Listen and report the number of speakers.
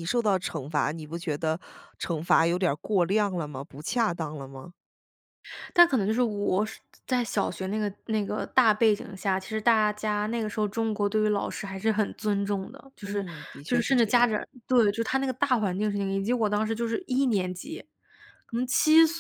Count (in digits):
2